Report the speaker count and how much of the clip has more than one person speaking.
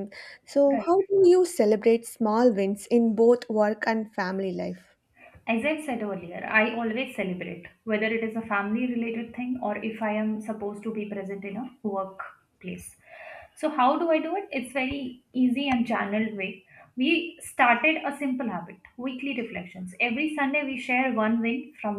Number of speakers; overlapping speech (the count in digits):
2, about 1%